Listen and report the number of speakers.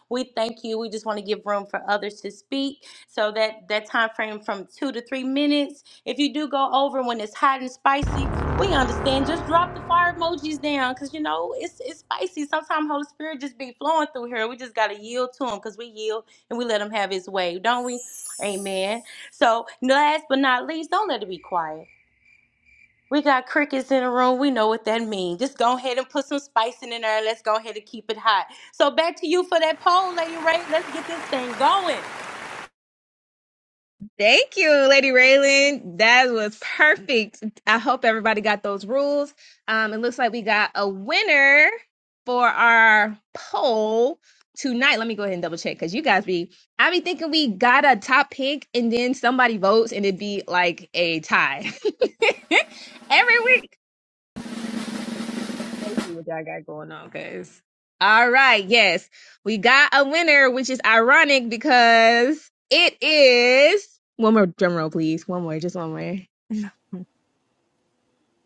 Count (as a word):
two